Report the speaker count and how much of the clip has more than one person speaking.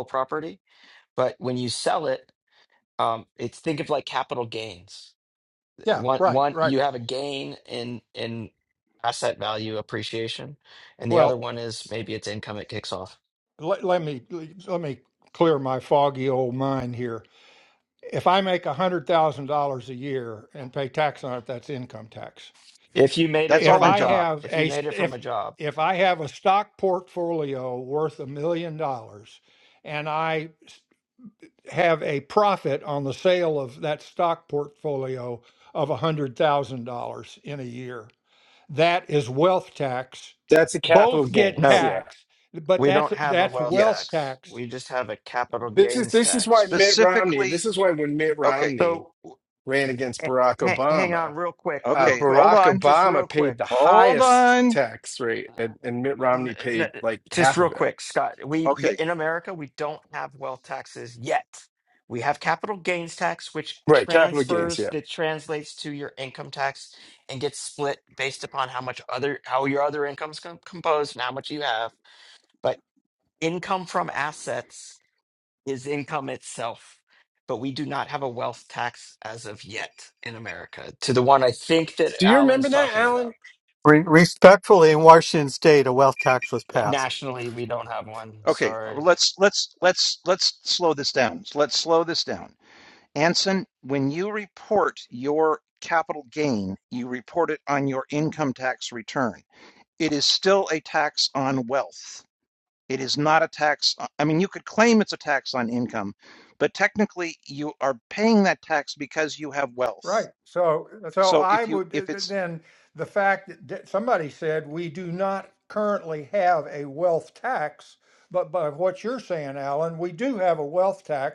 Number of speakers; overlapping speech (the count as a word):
five, about 14%